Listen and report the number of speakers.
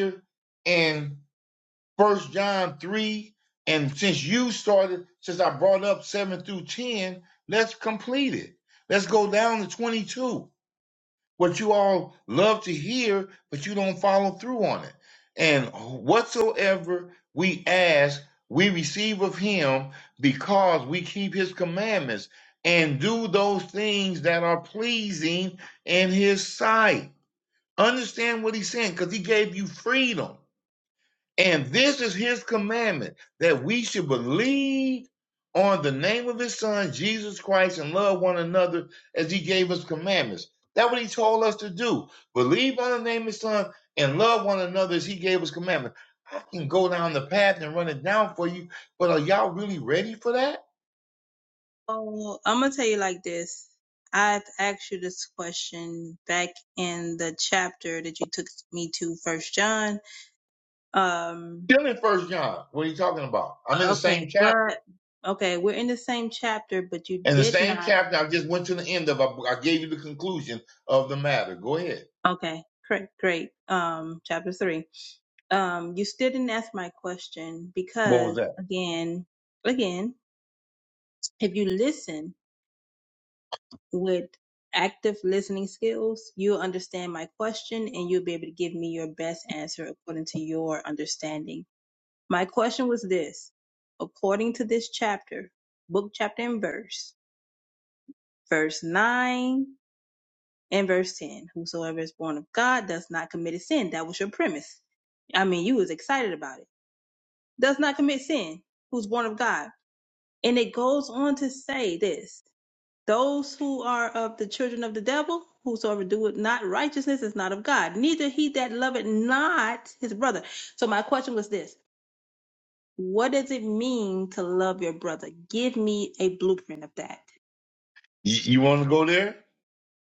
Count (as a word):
two